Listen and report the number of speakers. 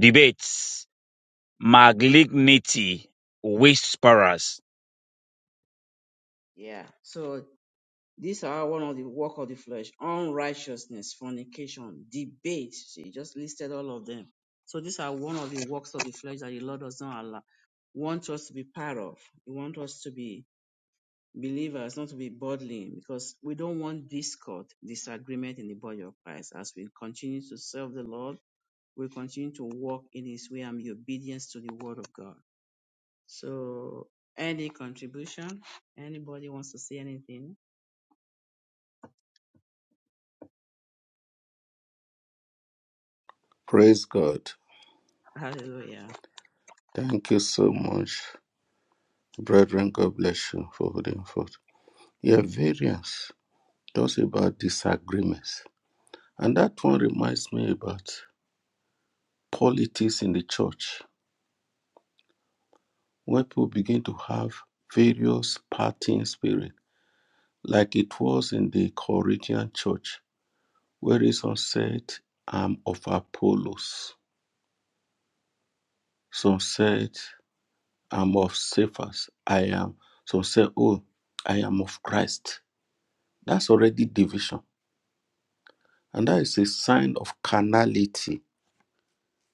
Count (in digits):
3